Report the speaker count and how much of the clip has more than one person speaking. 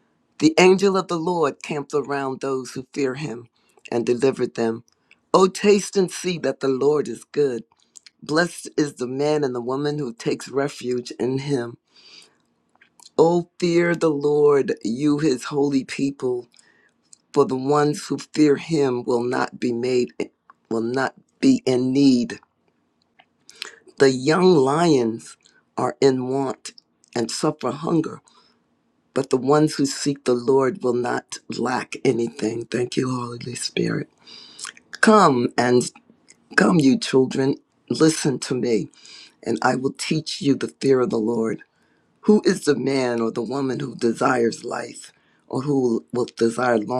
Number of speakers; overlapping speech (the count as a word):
one, no overlap